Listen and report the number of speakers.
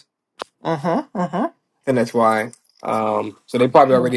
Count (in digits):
2